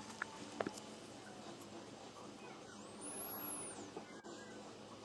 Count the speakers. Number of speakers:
0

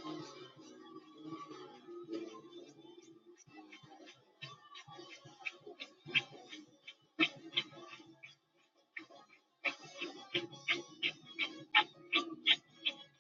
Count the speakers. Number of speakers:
0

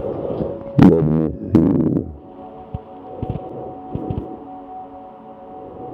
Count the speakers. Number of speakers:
1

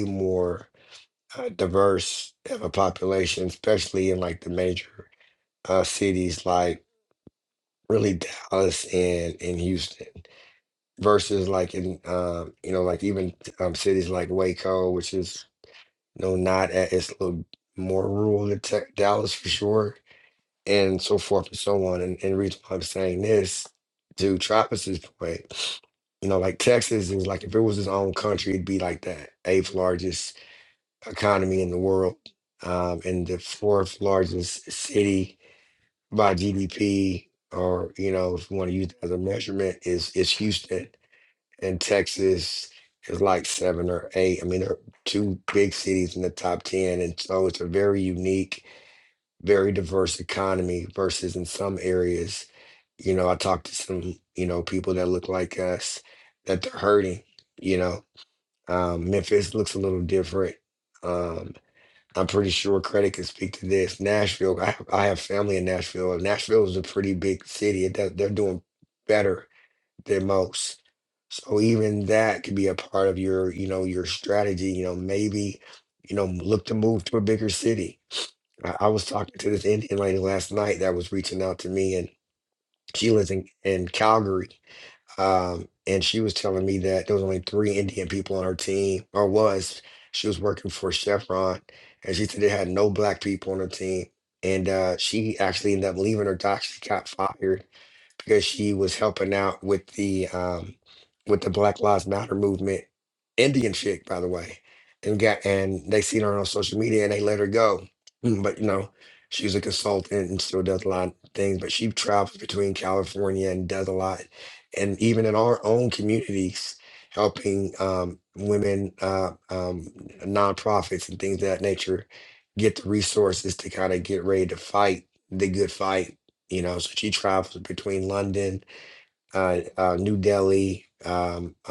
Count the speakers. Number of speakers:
1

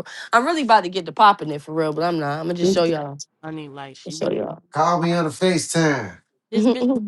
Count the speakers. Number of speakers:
3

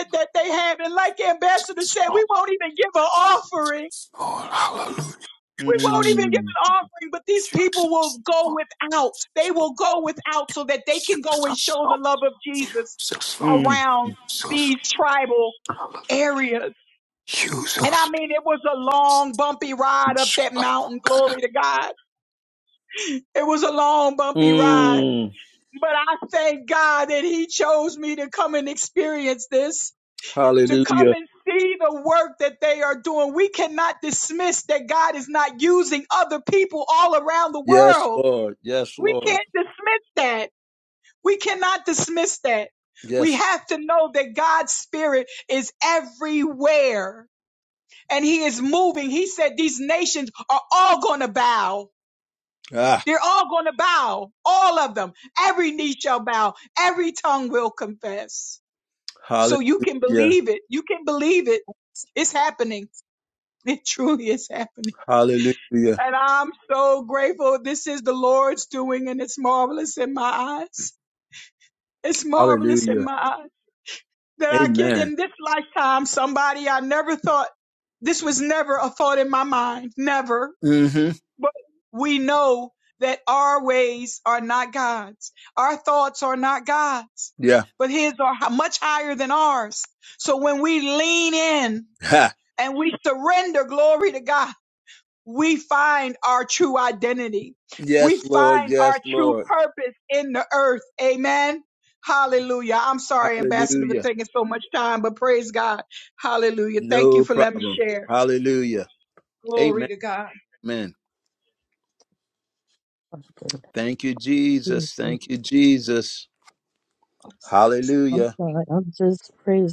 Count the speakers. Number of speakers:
4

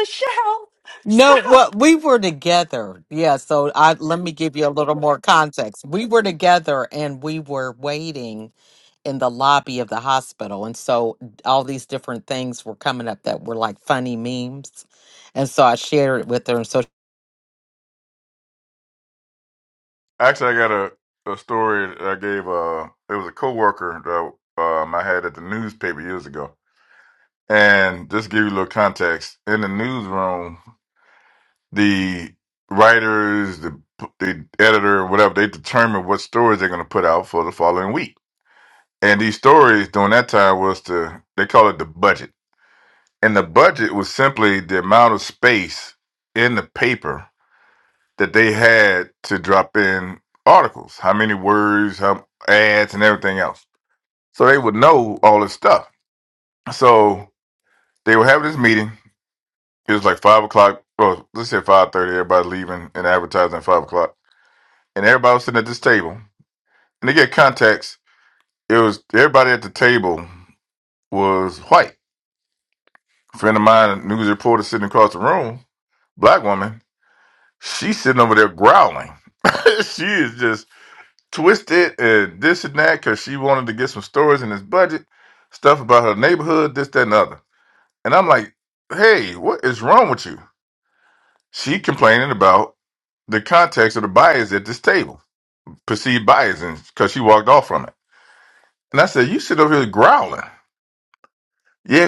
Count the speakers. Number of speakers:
3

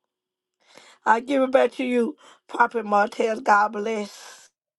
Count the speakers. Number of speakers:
1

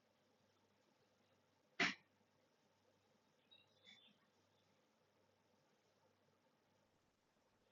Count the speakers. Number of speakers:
0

